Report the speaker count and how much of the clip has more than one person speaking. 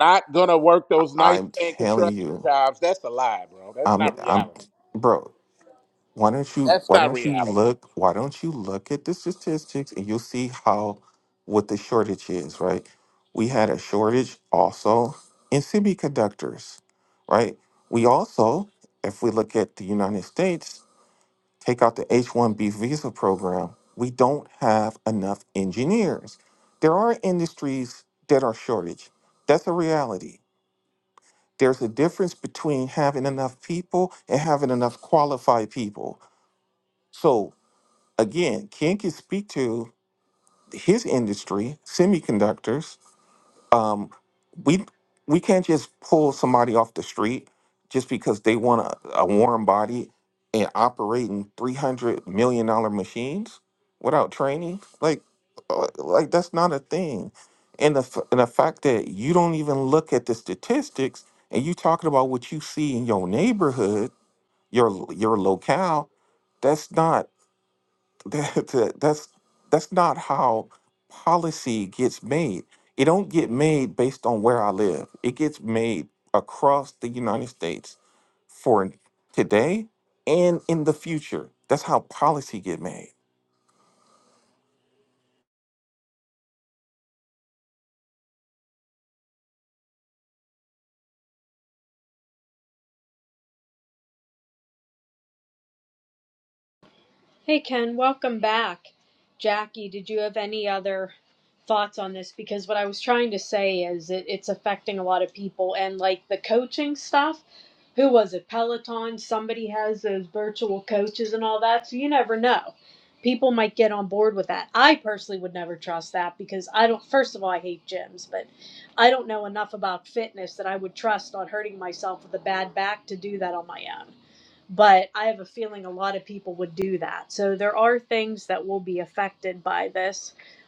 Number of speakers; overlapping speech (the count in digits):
3, about 2%